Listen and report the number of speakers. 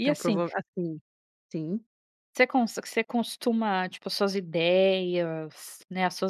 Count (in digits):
2